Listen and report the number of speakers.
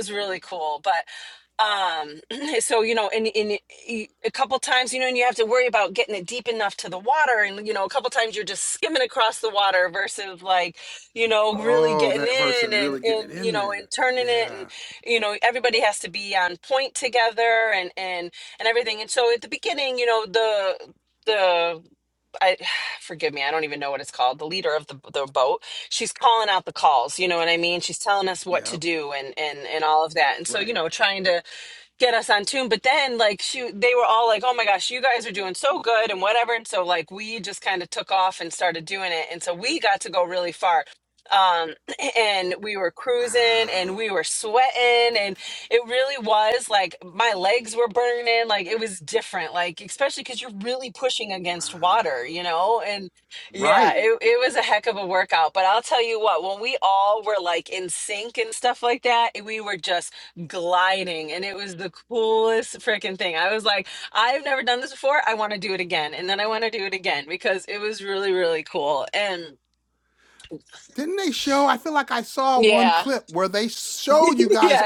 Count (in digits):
2